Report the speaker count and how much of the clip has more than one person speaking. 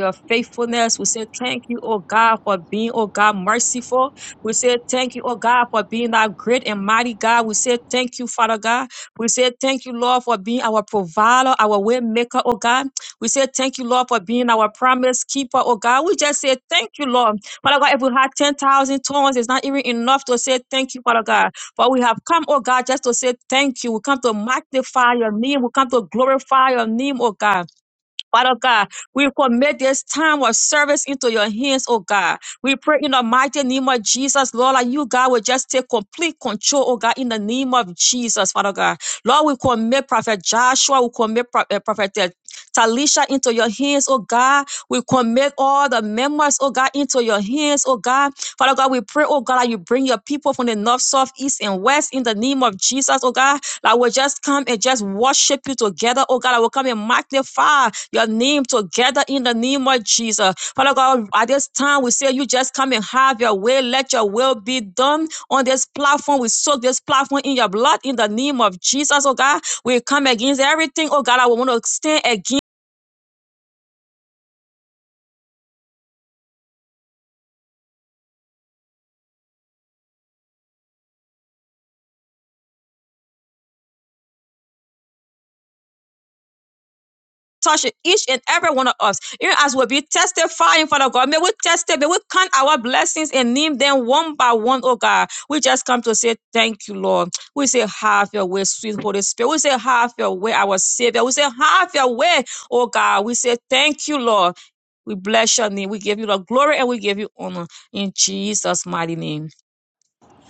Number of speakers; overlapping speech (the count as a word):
one, no overlap